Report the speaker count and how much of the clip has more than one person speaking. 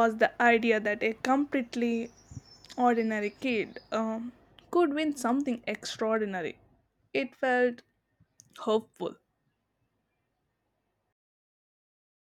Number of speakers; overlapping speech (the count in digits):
1, no overlap